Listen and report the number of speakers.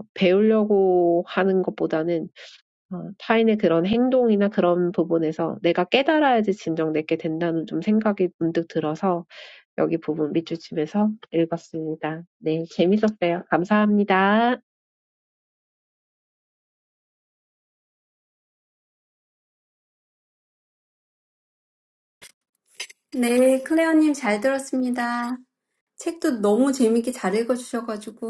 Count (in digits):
2